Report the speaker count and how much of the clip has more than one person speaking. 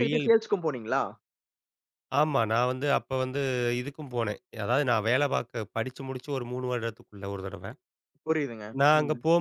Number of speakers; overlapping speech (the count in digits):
2, about 8%